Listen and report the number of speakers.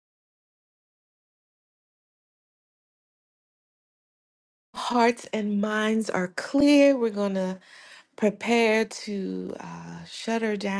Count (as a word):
one